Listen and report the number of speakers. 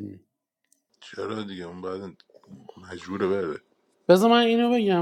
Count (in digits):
2